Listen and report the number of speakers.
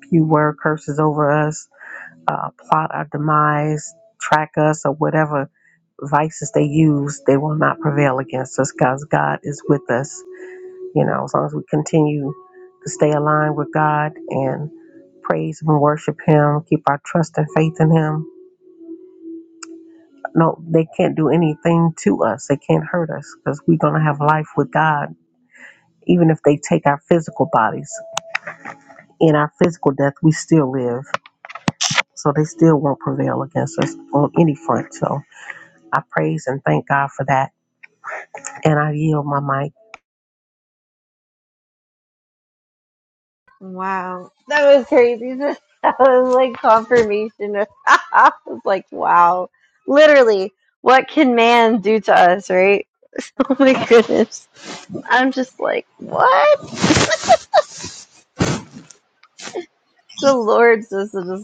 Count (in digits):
2